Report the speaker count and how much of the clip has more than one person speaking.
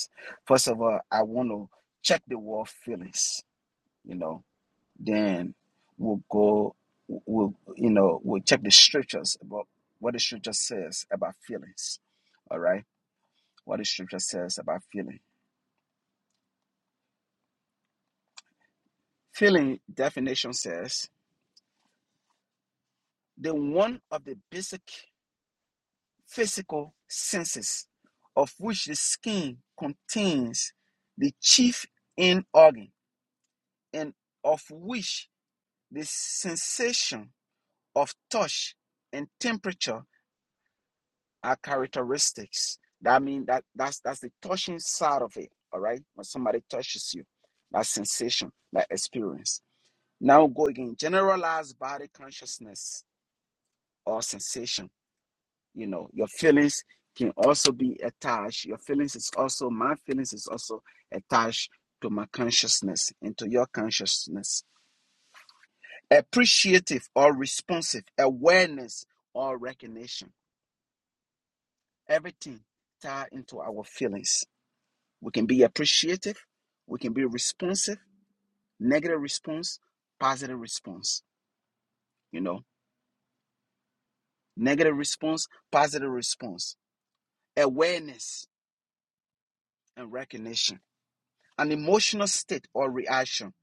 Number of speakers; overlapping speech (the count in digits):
1, no overlap